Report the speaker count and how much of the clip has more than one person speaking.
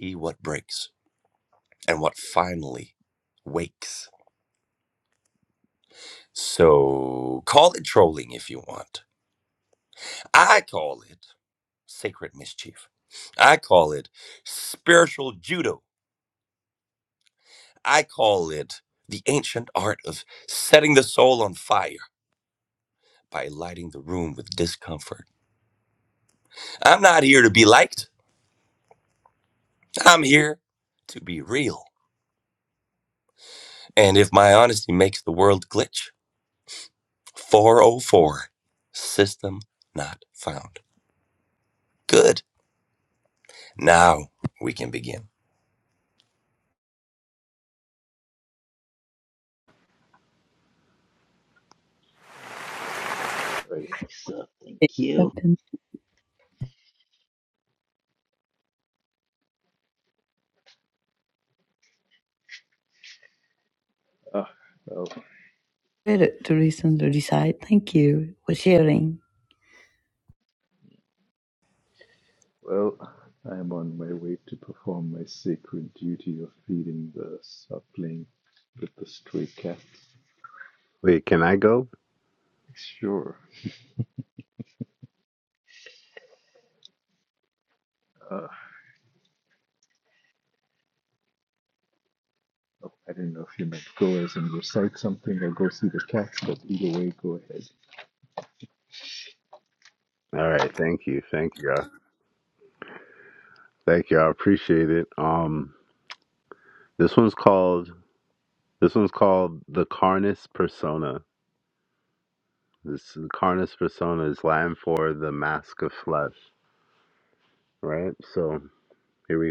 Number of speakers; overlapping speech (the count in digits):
4, under 1%